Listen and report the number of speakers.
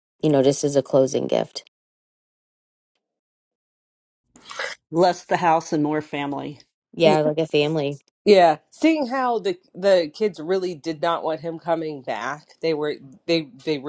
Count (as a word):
three